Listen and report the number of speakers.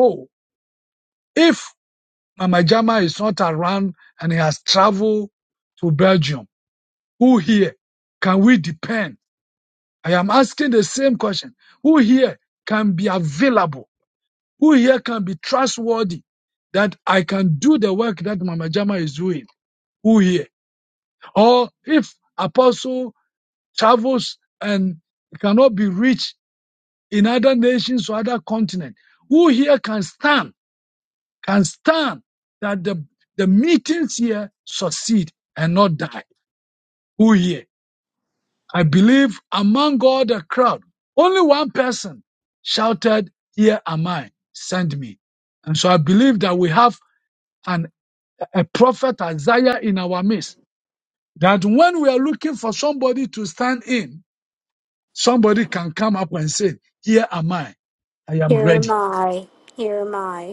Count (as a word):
two